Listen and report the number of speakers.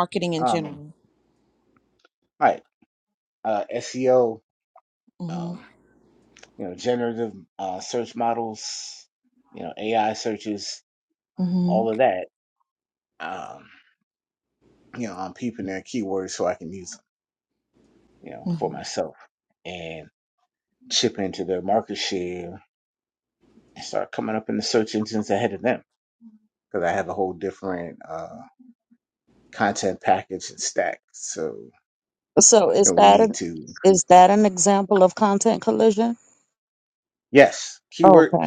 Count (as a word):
three